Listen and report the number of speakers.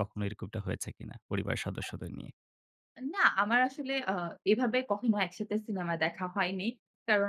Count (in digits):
2